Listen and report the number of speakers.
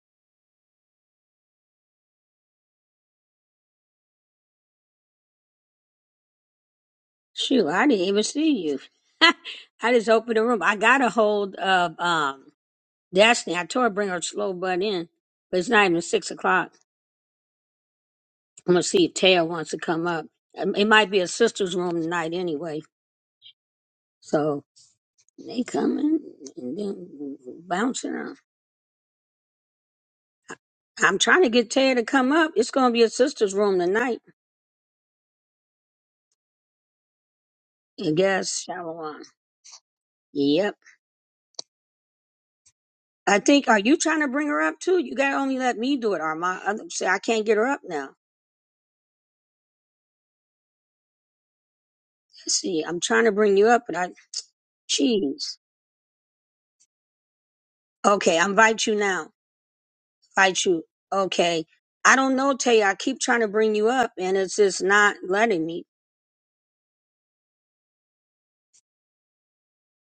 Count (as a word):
one